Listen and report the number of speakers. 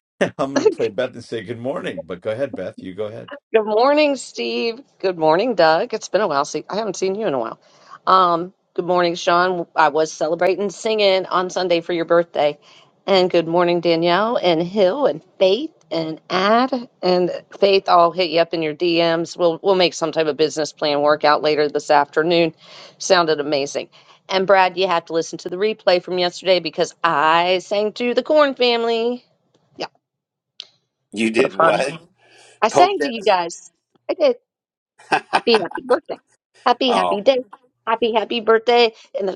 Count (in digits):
3